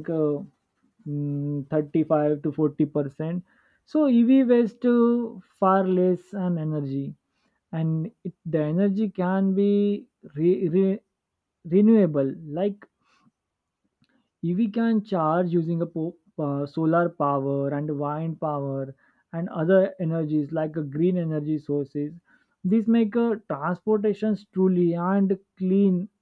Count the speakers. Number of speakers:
1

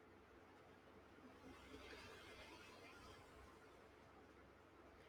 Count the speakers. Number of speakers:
0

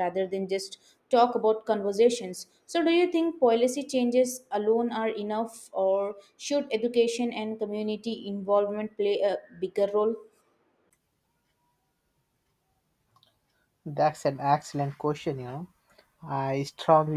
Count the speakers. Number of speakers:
2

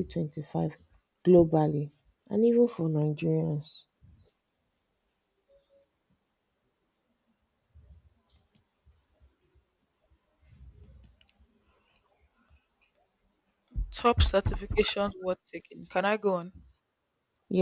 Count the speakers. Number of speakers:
2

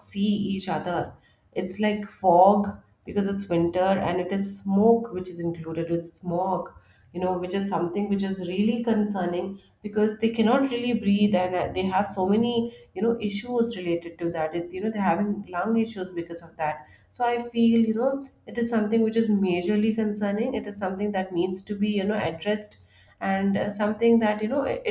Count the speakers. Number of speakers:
1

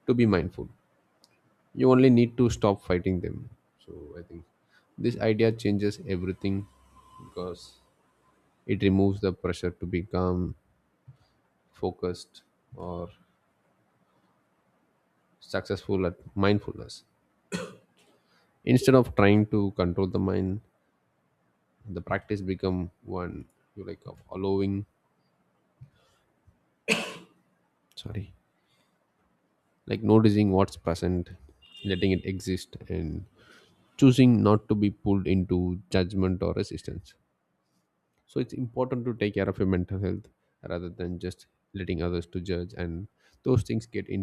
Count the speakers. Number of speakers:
1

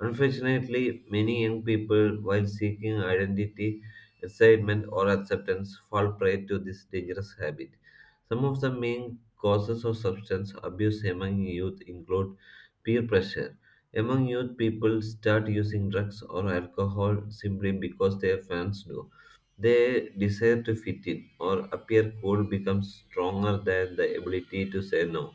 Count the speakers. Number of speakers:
1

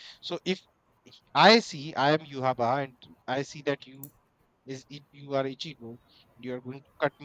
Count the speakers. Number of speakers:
1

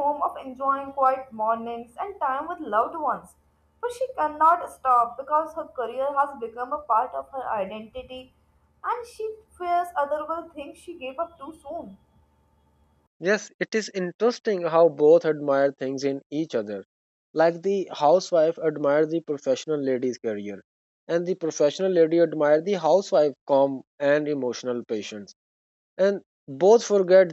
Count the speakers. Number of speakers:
2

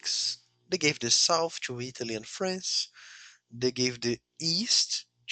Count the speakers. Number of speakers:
1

